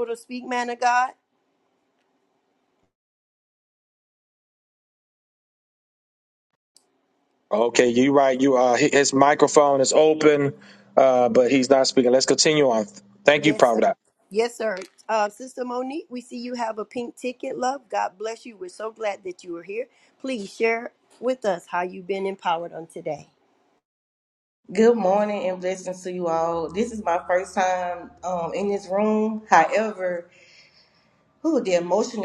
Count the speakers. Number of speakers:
three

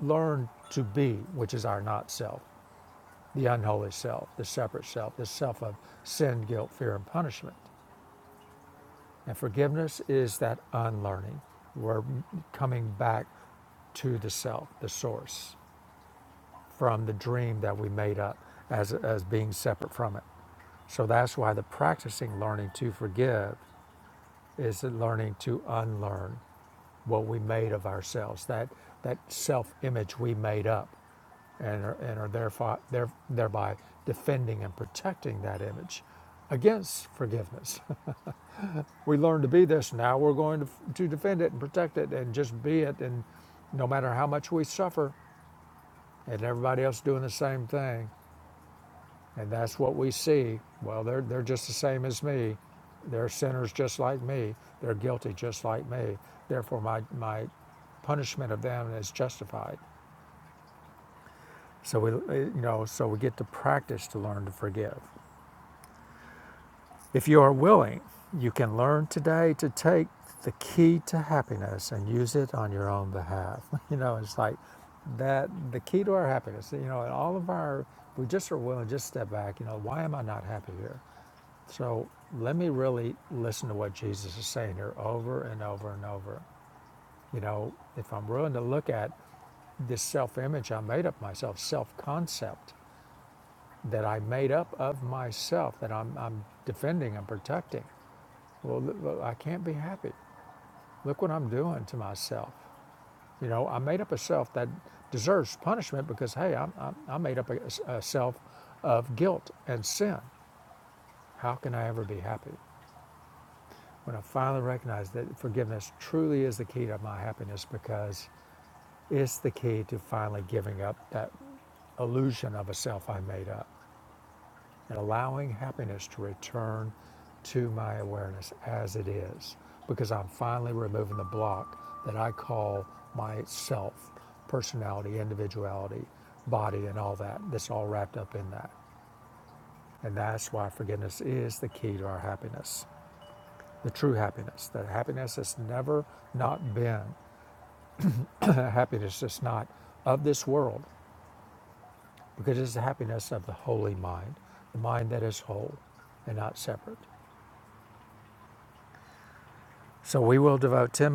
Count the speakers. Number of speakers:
one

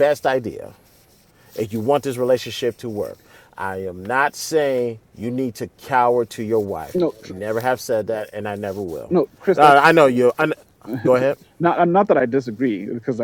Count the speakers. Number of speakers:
two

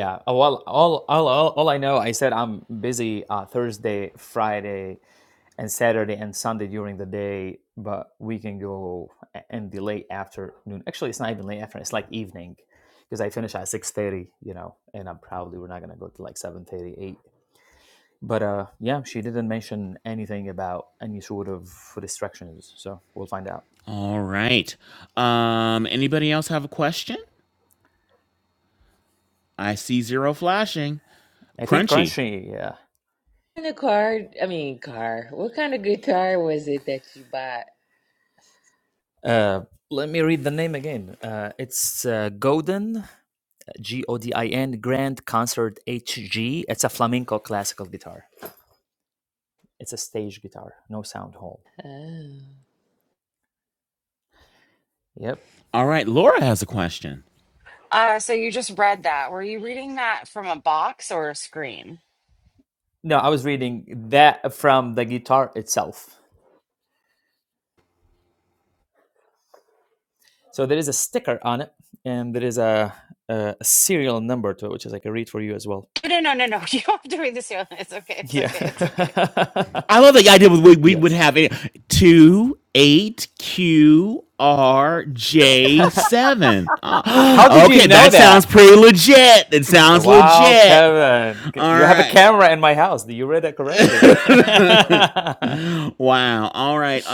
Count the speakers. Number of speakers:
four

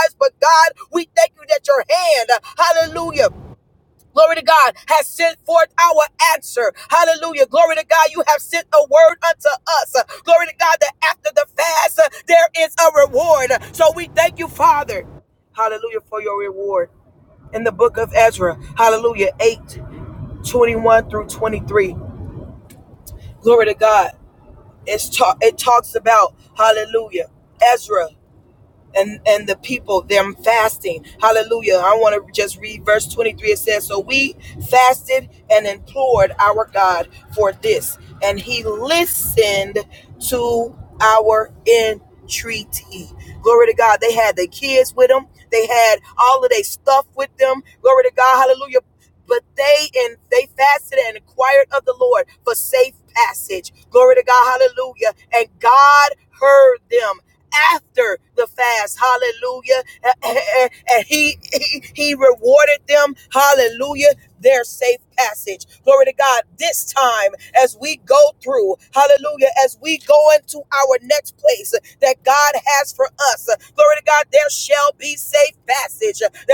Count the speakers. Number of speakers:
one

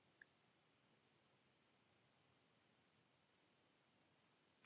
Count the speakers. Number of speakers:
zero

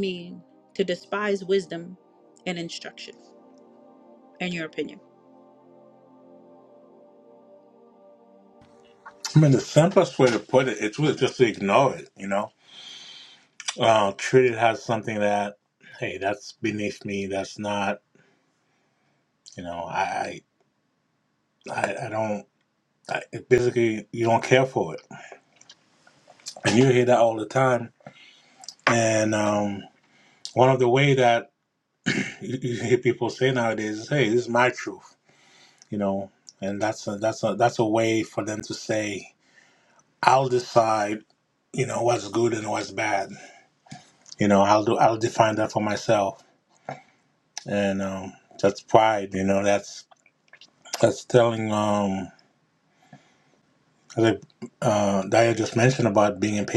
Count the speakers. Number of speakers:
two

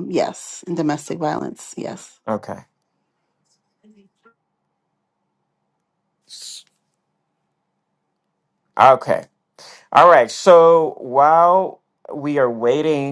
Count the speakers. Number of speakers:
two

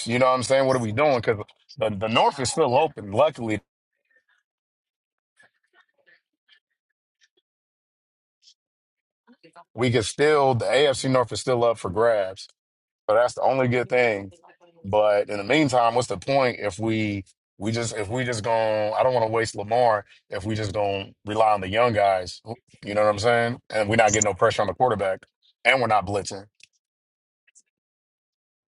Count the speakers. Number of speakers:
one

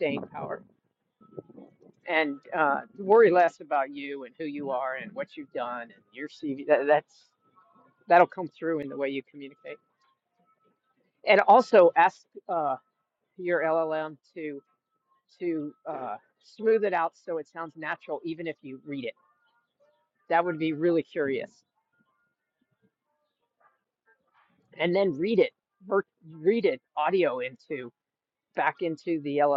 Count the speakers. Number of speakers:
one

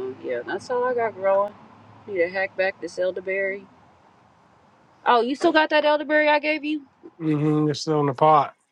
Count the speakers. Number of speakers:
two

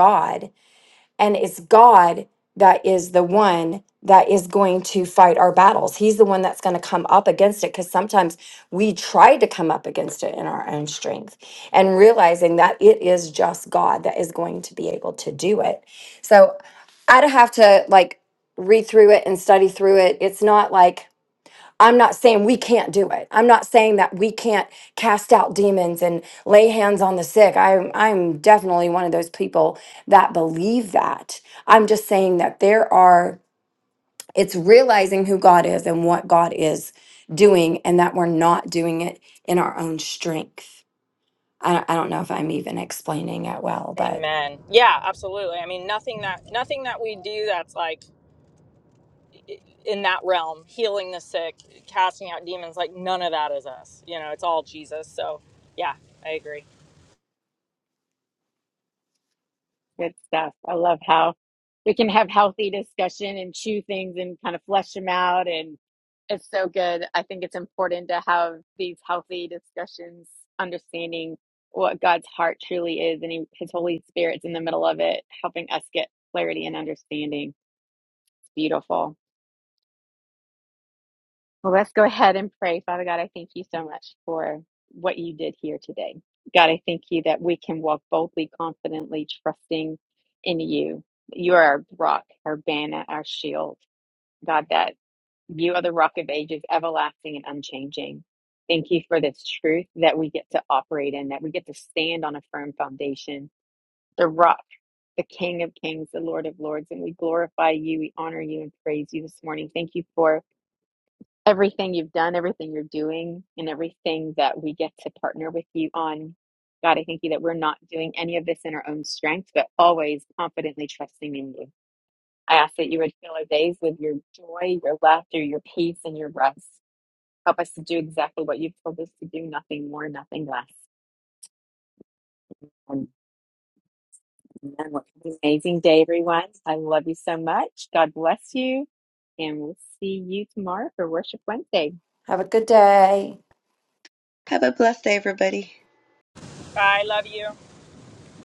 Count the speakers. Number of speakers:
four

